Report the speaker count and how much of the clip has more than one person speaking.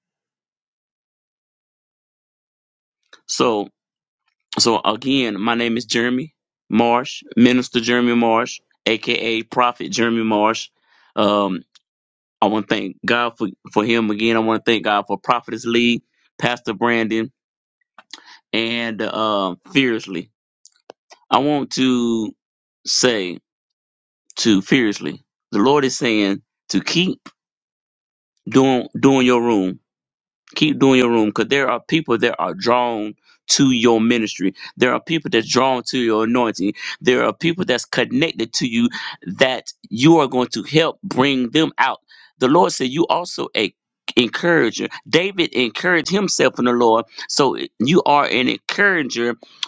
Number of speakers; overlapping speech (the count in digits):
1, no overlap